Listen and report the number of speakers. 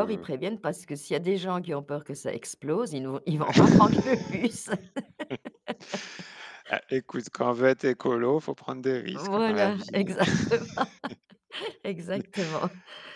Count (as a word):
two